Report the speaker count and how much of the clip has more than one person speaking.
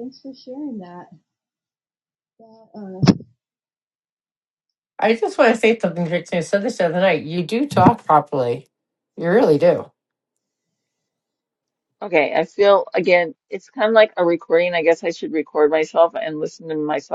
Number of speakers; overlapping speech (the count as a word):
three, no overlap